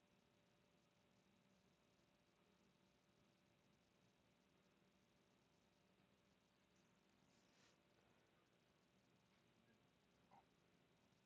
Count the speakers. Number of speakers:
0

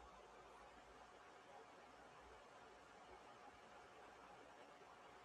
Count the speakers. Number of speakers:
0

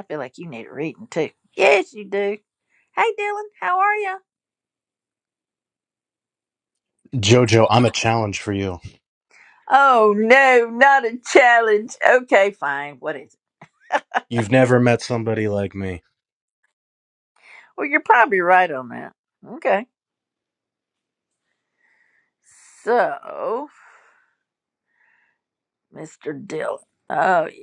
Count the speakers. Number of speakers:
2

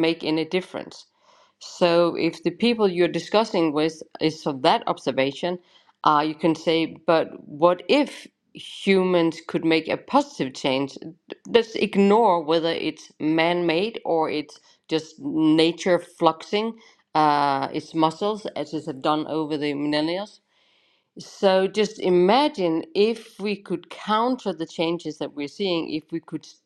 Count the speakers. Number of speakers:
1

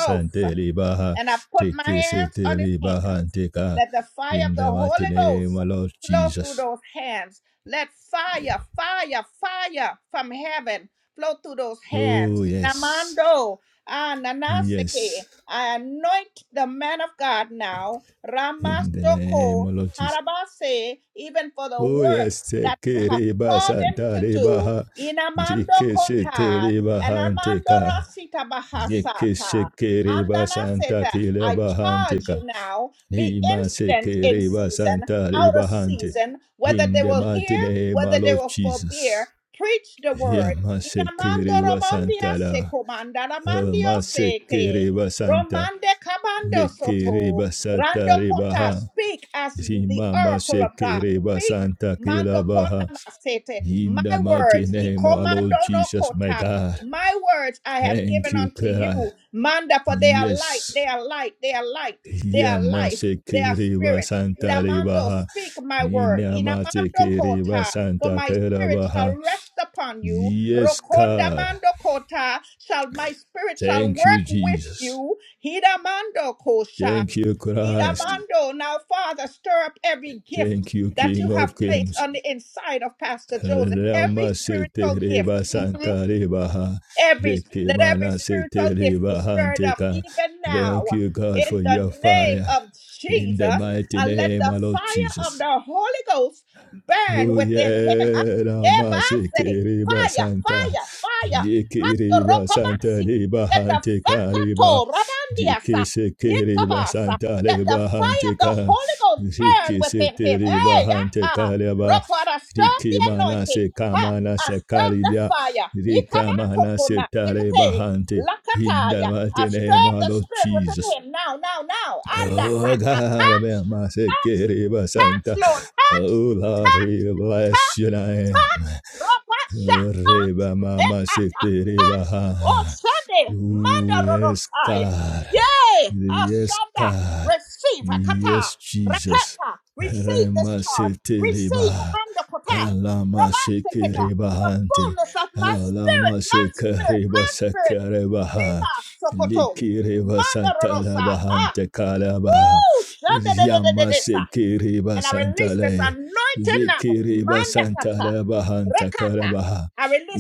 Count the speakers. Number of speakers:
2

